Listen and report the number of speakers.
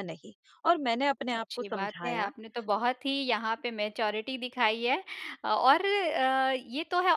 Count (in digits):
2